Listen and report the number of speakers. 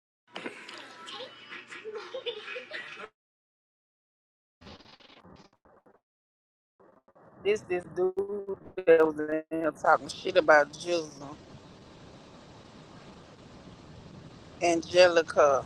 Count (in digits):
1